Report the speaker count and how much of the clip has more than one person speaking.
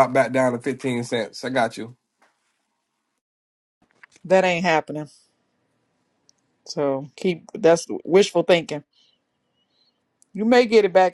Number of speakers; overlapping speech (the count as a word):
two, no overlap